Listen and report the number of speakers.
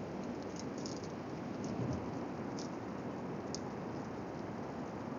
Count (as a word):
zero